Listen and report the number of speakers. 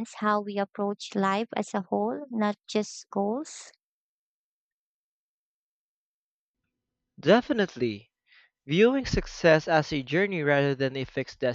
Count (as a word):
two